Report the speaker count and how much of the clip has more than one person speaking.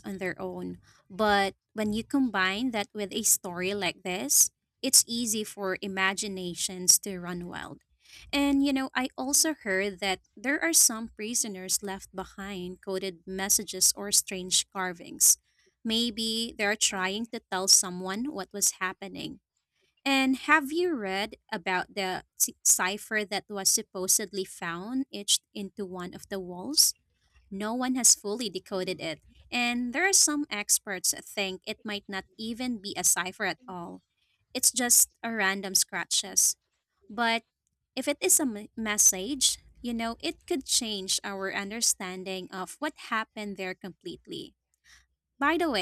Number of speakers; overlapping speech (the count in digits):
1, no overlap